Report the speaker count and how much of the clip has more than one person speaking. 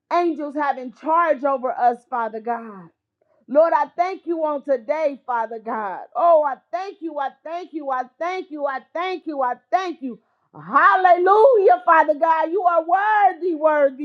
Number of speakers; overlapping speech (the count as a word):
one, no overlap